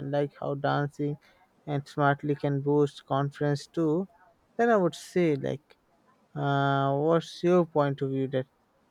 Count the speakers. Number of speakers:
1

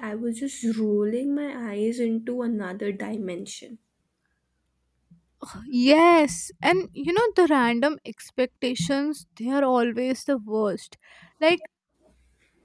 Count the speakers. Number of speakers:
2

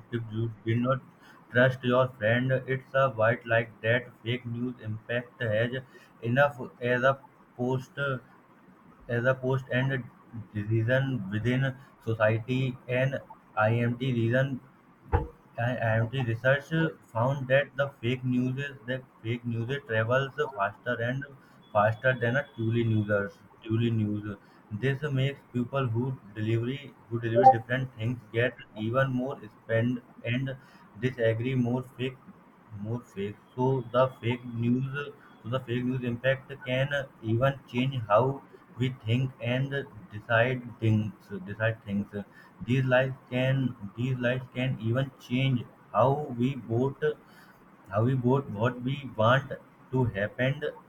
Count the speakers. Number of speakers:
1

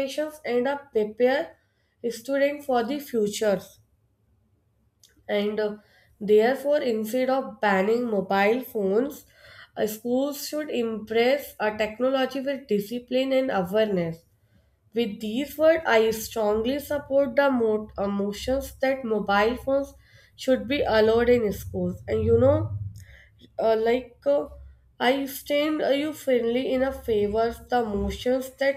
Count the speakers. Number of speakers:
1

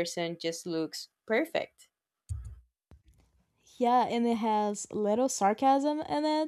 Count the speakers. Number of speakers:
2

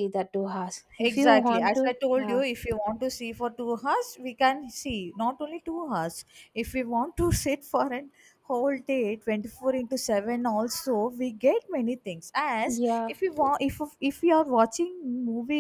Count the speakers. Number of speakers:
2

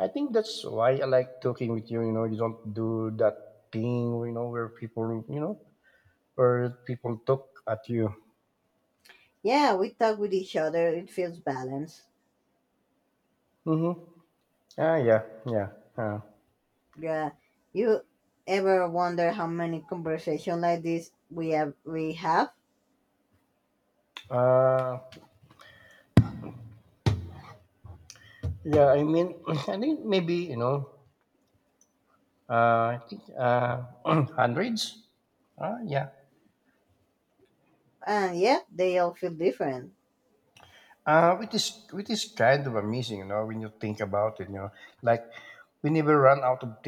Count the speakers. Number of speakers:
2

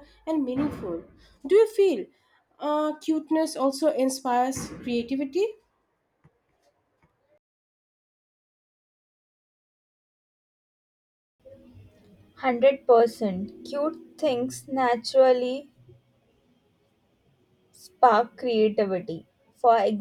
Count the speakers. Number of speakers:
2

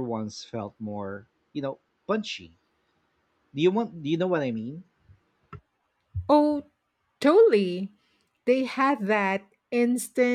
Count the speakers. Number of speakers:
2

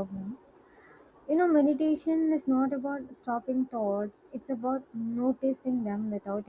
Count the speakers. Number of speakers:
1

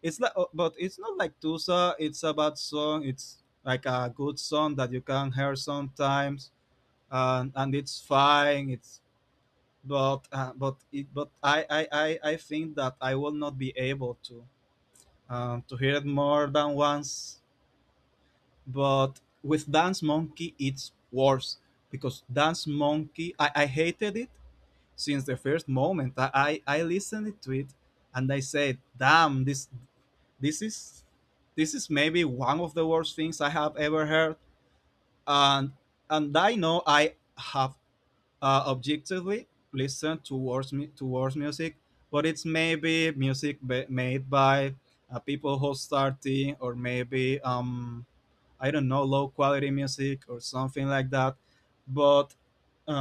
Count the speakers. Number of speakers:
1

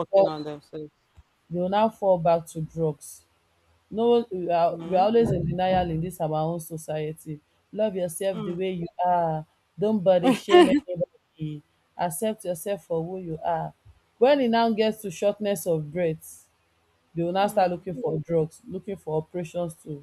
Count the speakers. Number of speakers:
2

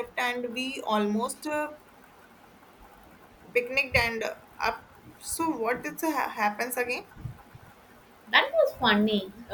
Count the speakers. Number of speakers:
2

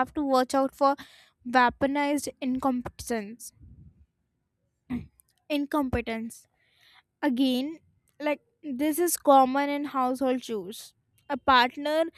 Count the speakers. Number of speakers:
1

